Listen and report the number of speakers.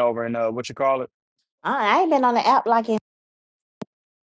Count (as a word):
two